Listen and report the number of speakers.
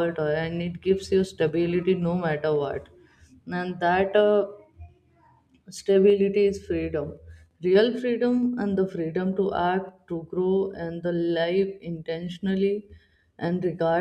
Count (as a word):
one